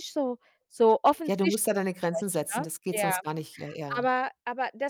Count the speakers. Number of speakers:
2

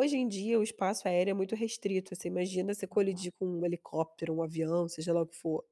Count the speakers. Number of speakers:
1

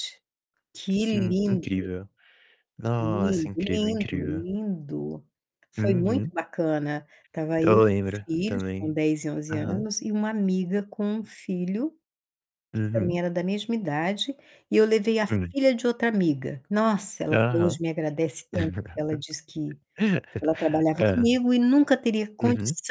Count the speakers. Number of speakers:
2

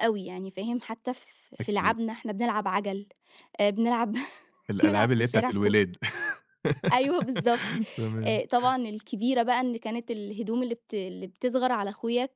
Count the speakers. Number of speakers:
2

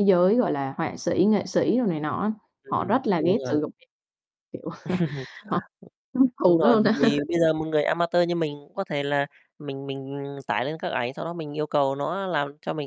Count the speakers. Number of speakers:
2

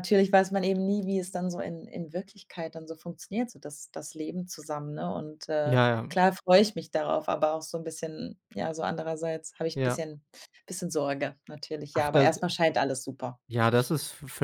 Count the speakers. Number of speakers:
2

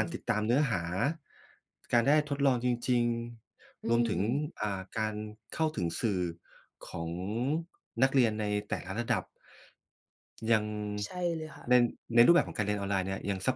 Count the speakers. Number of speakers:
2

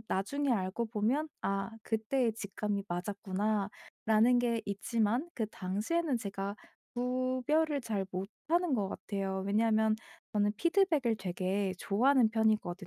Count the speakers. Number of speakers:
1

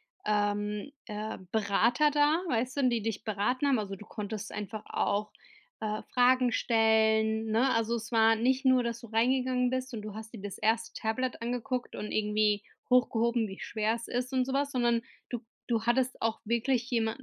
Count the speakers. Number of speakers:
1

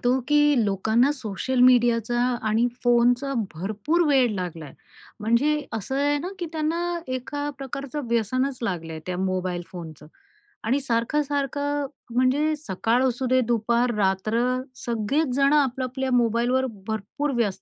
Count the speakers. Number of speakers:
1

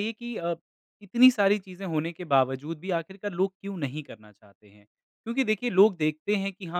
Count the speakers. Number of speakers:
1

